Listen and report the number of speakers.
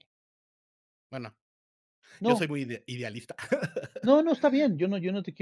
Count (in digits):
2